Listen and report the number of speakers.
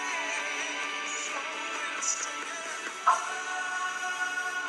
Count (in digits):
0